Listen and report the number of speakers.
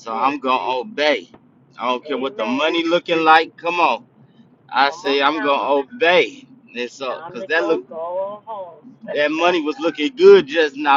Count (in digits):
2